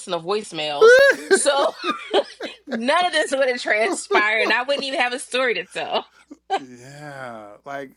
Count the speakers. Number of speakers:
two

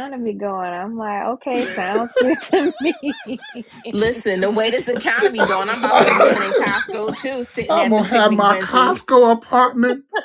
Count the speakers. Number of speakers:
three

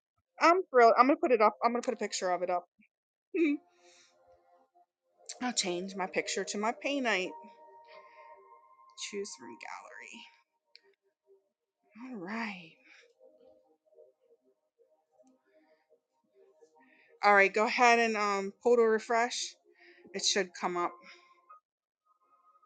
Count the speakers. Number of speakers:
one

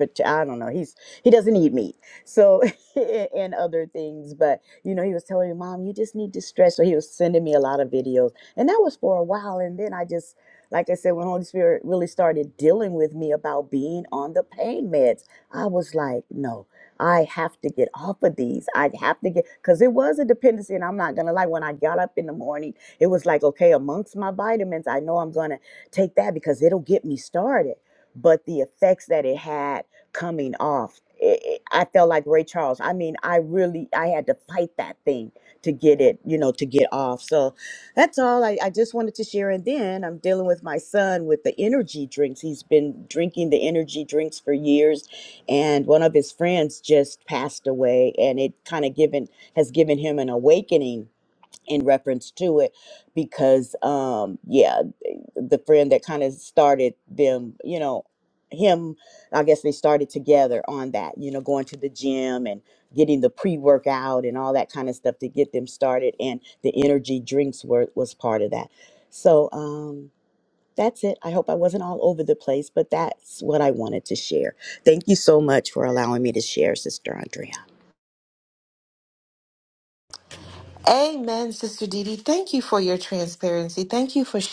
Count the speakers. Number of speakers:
two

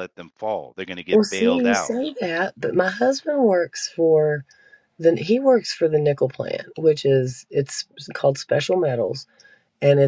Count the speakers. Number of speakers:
two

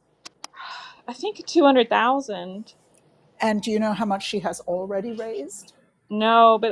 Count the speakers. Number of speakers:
two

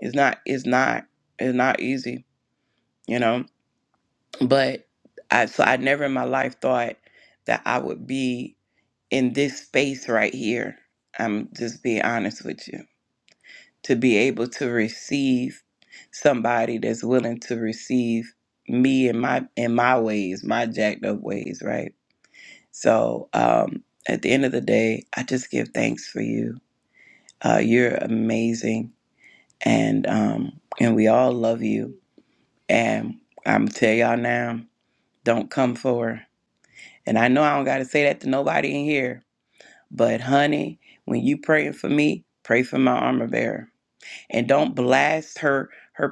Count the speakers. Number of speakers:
one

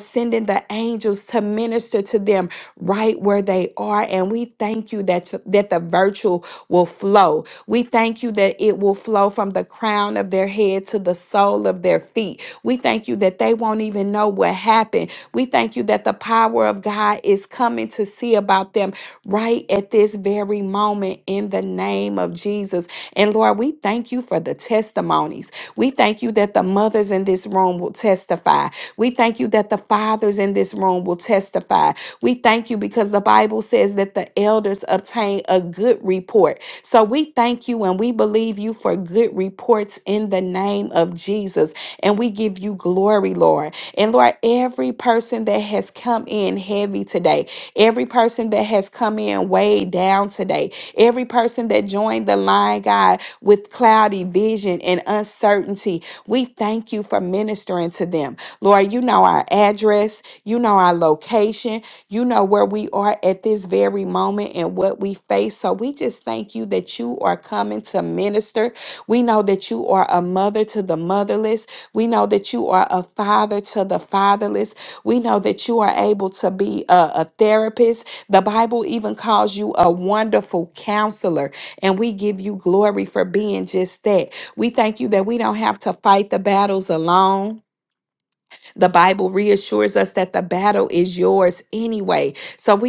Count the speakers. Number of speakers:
one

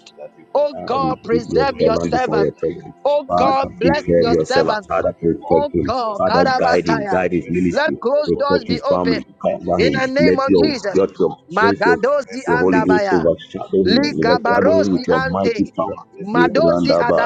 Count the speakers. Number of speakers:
two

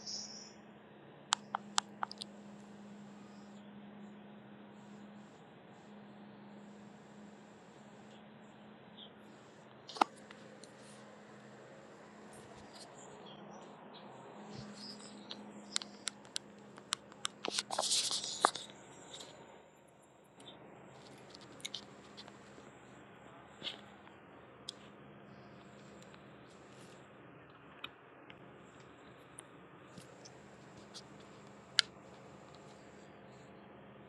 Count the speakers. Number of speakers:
zero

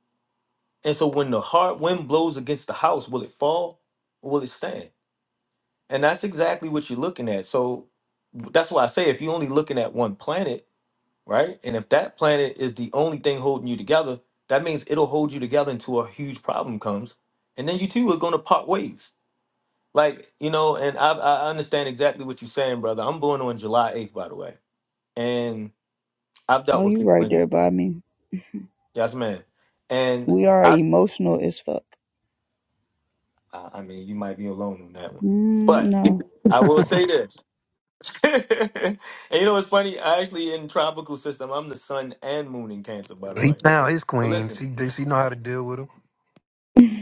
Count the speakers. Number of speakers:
three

